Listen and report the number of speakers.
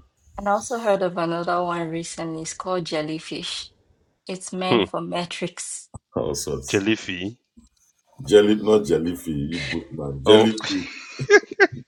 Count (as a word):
three